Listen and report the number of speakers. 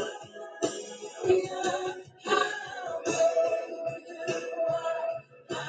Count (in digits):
0